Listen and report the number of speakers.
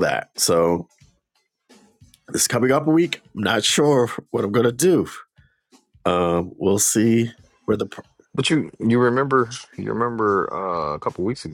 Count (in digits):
2